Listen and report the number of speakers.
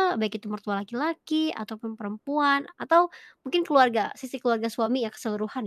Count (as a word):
one